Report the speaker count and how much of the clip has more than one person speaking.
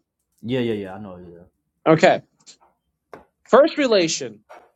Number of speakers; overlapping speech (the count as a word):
two, no overlap